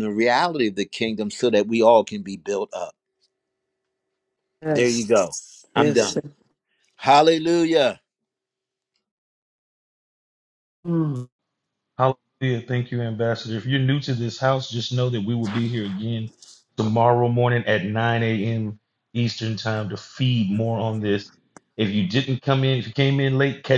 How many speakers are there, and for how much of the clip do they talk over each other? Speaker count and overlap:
3, about 3%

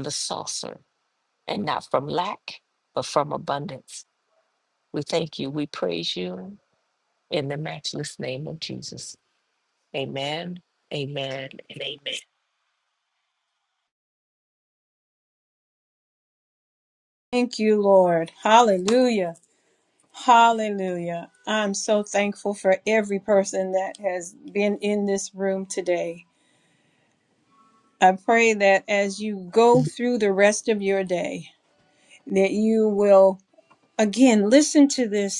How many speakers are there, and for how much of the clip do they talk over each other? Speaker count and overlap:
2, no overlap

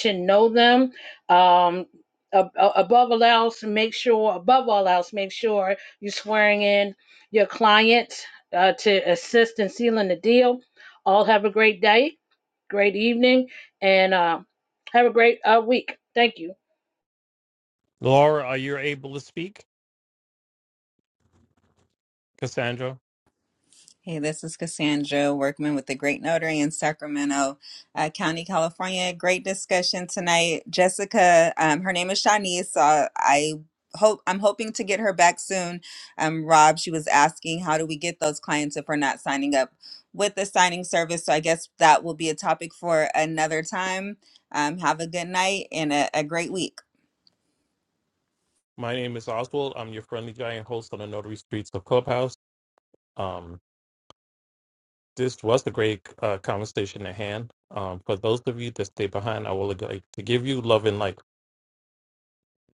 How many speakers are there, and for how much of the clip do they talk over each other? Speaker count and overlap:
3, no overlap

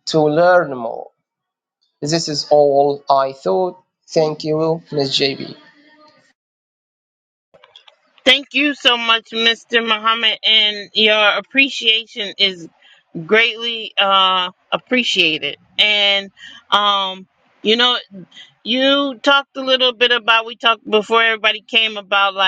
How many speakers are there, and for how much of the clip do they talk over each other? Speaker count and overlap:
2, no overlap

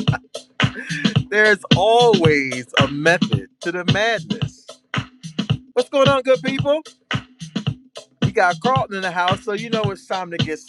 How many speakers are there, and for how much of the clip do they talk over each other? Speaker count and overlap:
1, no overlap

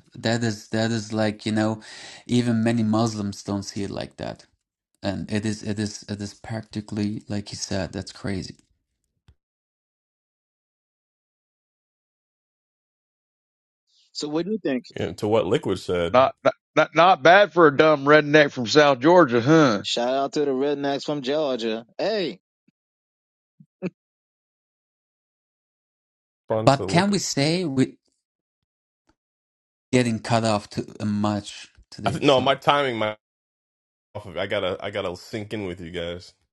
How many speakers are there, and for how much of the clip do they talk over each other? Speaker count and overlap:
4, about 3%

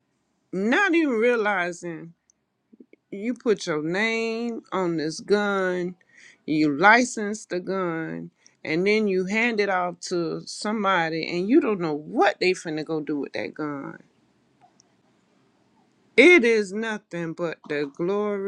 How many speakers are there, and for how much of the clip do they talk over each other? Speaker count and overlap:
1, no overlap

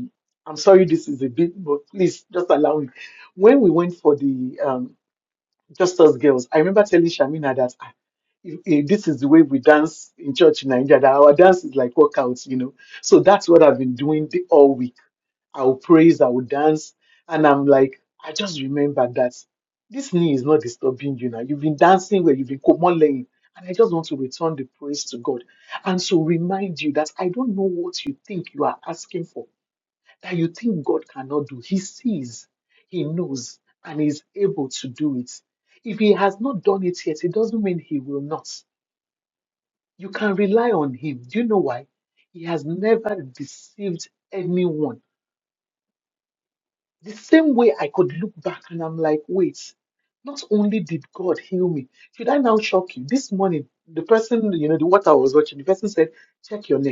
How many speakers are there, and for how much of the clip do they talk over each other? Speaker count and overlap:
1, no overlap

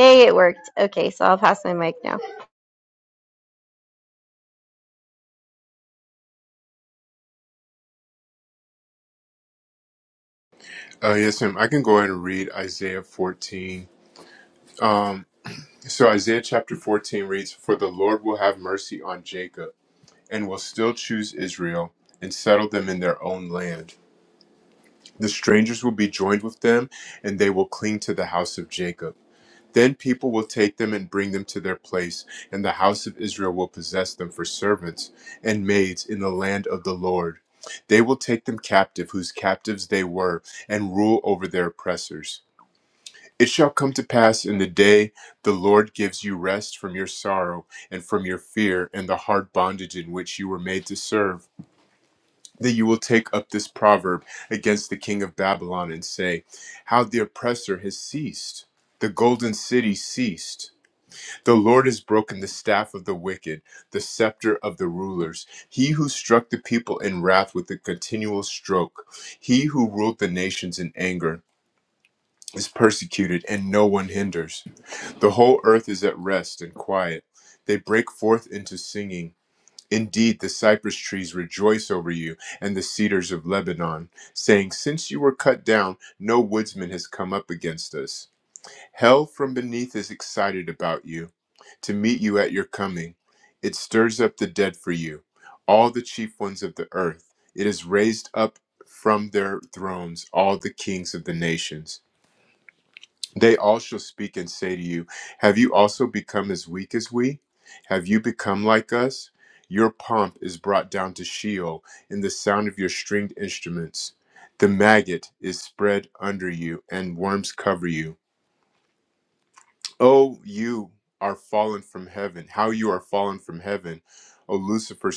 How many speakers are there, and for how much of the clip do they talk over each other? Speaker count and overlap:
2, no overlap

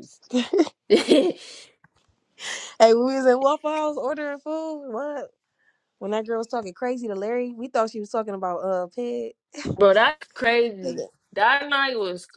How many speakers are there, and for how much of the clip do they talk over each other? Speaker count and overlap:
2, under 1%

